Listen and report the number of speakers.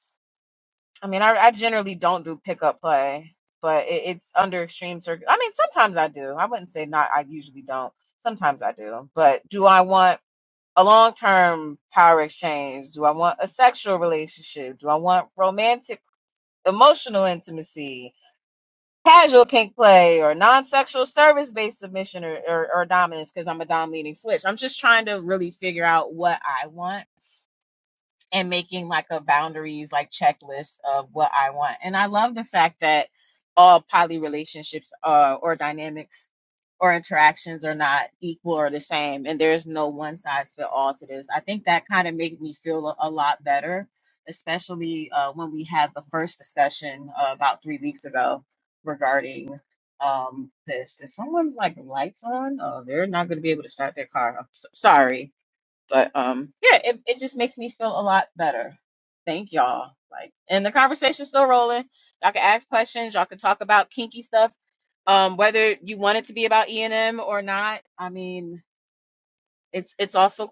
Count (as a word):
one